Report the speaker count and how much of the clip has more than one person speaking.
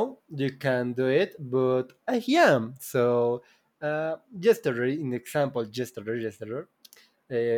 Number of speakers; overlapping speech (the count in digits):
1, no overlap